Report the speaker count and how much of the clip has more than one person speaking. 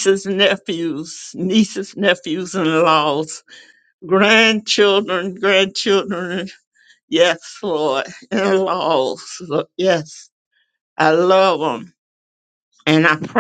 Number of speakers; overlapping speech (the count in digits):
1, no overlap